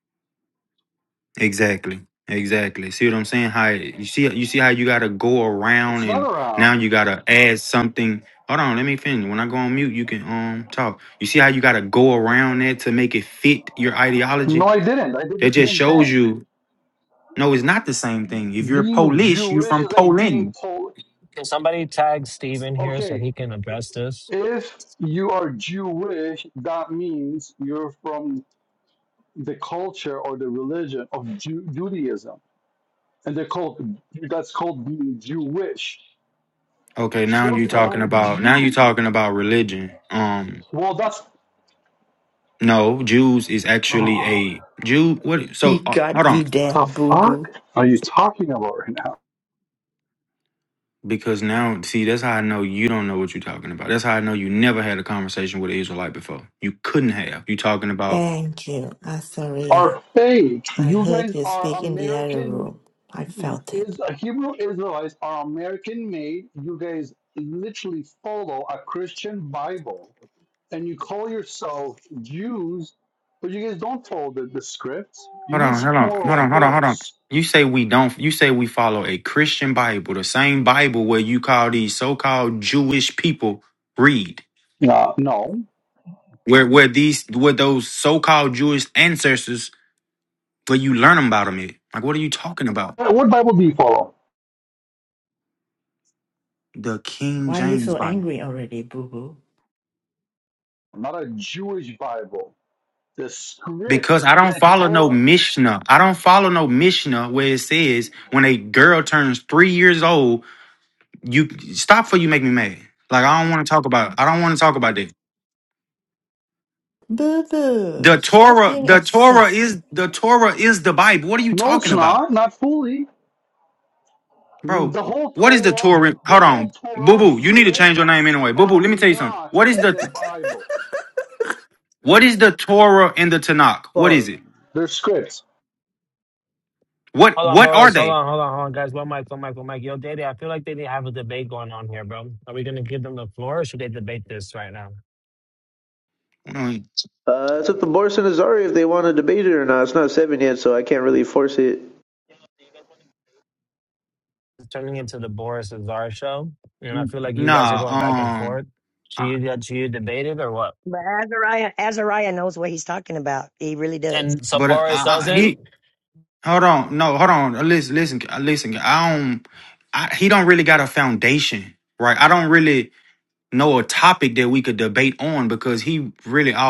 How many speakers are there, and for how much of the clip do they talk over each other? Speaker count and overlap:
six, about 13%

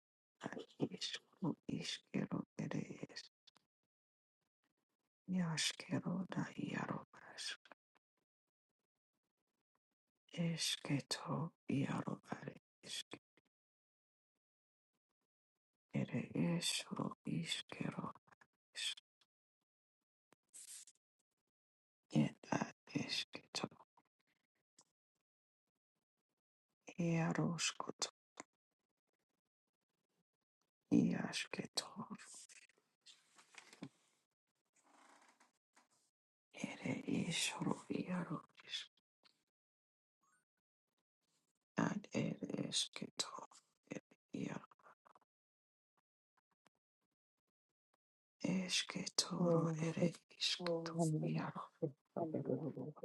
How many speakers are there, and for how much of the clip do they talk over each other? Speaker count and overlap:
two, about 2%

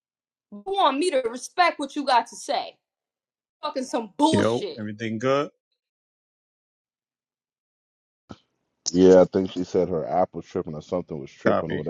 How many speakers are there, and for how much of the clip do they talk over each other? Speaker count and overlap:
three, about 7%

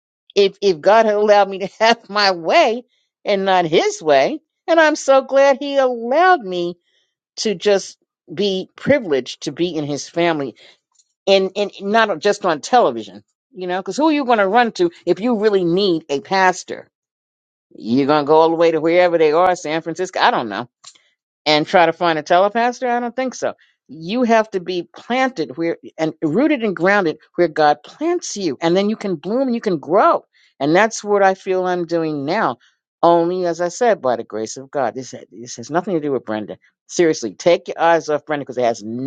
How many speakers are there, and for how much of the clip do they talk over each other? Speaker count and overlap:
one, no overlap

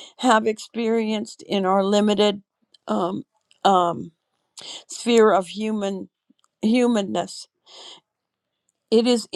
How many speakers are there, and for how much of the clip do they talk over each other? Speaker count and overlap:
one, no overlap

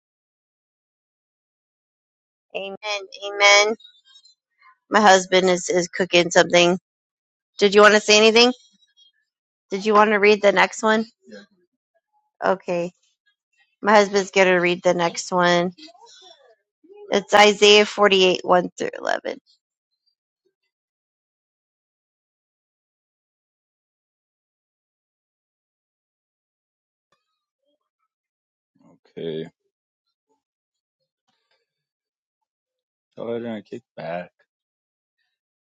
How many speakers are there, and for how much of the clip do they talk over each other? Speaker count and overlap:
two, no overlap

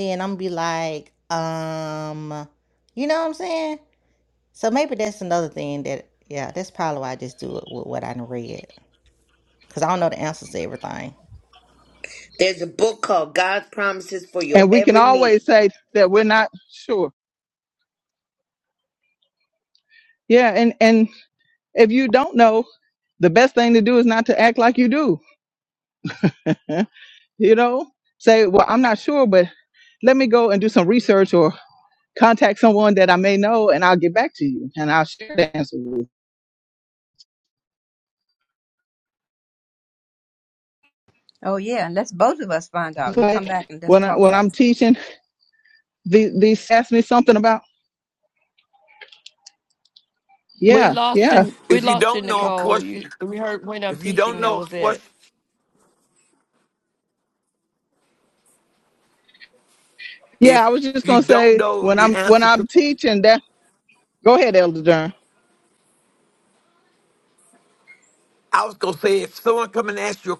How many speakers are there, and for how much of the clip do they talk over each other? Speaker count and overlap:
six, about 10%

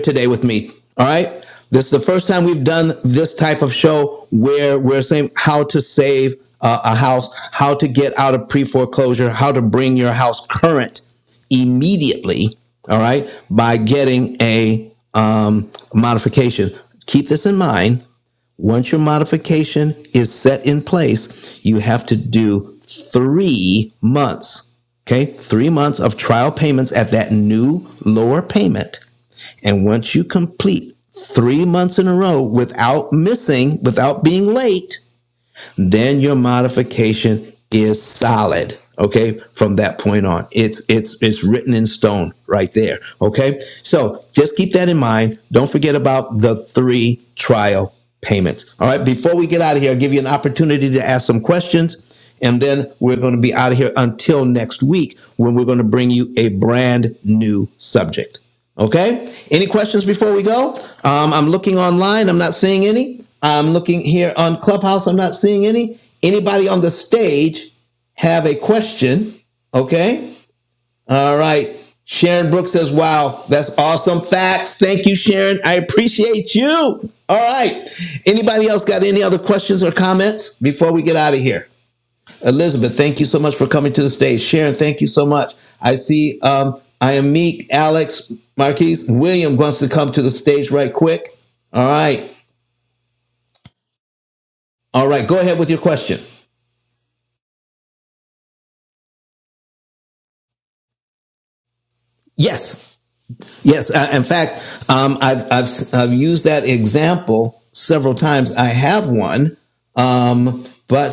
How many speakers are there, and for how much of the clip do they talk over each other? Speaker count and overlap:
one, no overlap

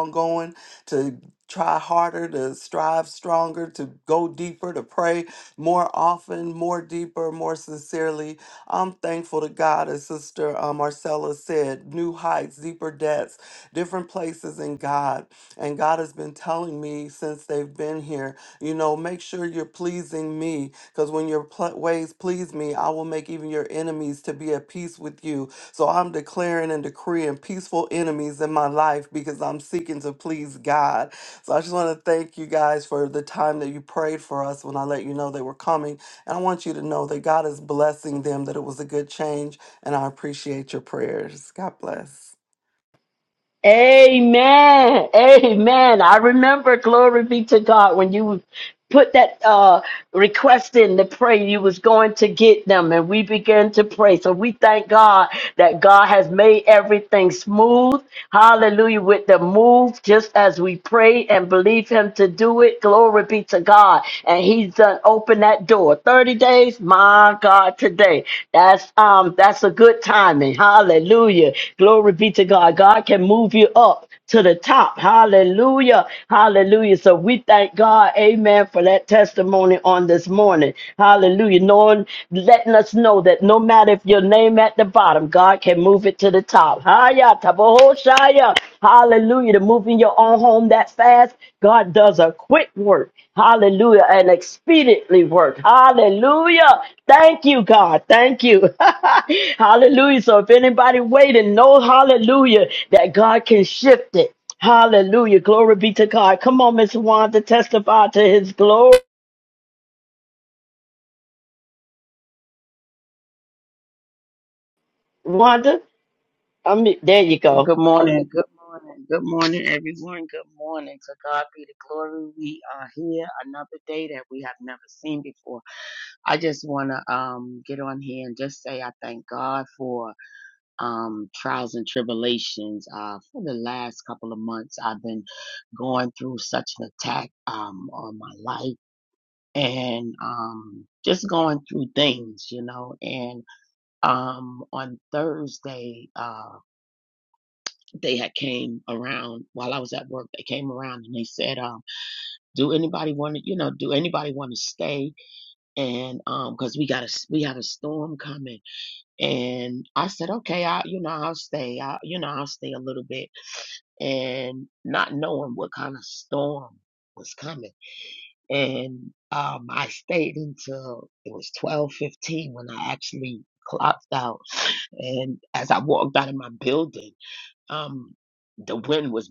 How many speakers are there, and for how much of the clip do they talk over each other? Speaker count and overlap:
three, under 1%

